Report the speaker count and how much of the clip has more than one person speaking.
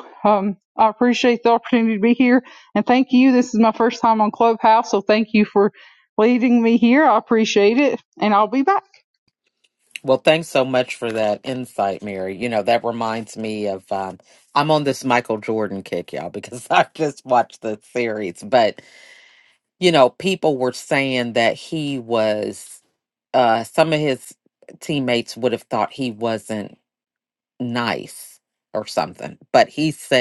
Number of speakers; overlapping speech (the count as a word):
two, no overlap